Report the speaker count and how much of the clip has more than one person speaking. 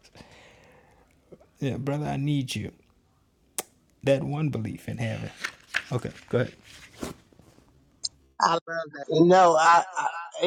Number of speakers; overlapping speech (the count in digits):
2, no overlap